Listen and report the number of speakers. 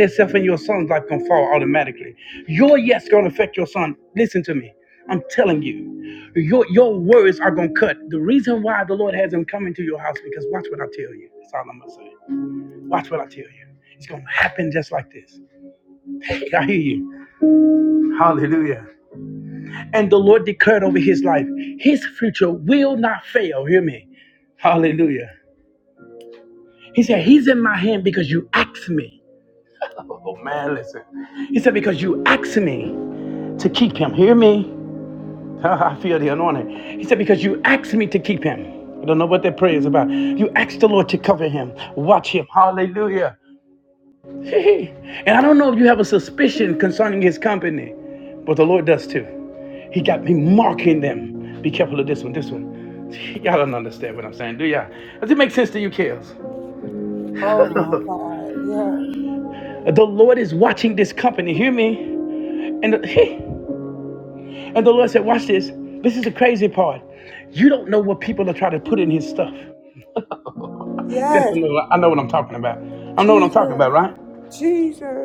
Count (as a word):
two